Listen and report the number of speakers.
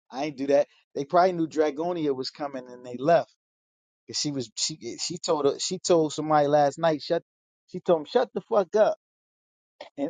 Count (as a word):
one